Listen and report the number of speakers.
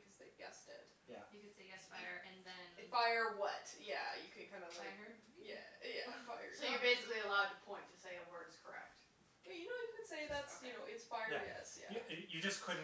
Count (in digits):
4